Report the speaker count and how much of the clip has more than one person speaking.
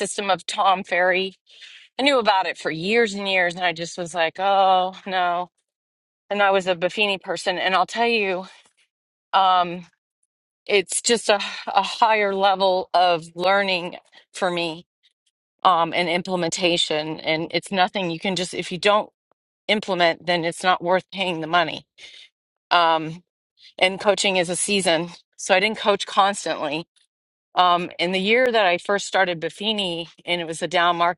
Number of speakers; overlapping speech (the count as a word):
one, no overlap